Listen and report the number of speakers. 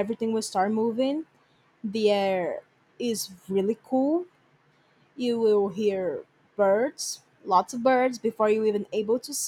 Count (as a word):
one